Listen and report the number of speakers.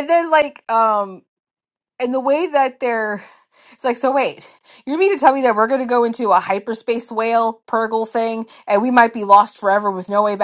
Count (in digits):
1